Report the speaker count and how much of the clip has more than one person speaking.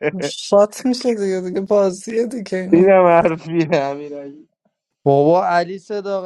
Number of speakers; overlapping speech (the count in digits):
3, about 2%